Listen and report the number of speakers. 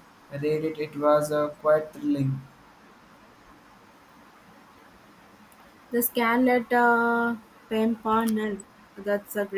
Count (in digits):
2